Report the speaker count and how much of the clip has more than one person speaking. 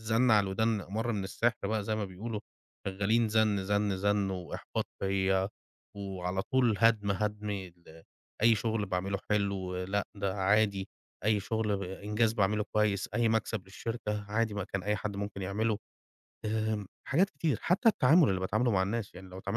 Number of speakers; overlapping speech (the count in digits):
1, no overlap